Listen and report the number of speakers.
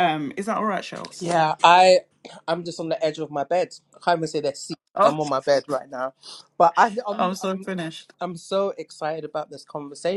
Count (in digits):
2